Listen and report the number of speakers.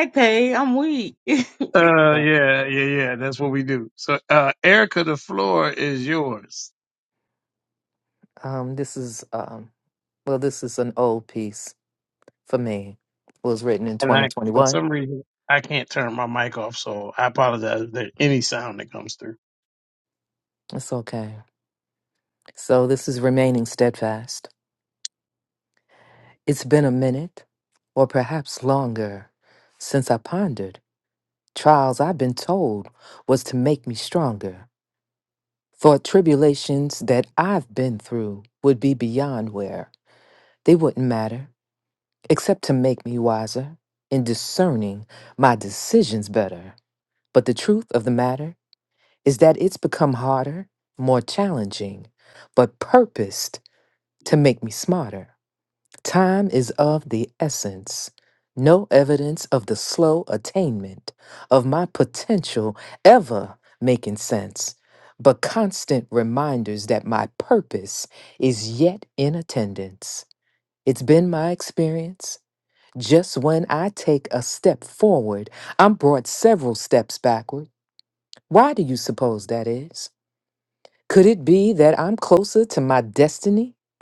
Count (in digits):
3